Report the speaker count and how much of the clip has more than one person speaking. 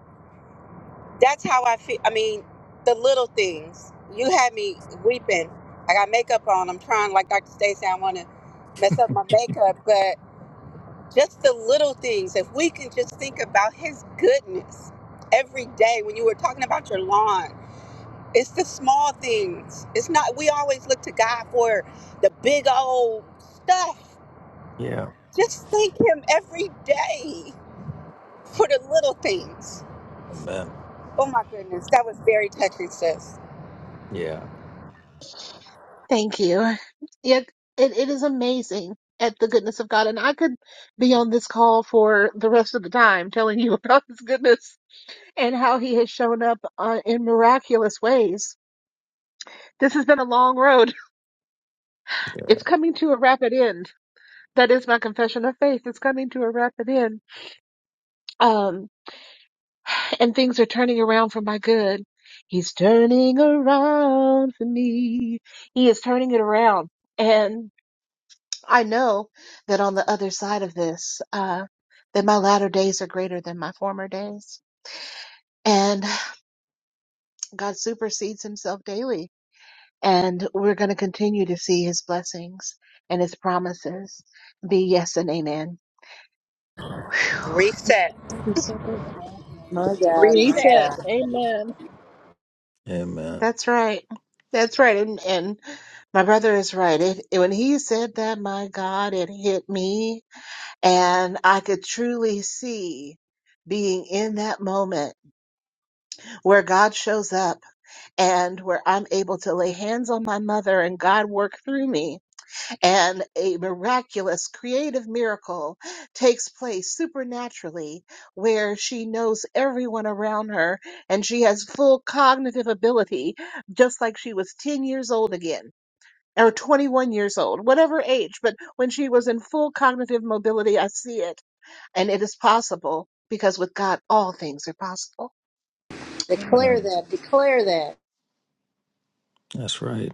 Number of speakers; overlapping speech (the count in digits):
4, about 1%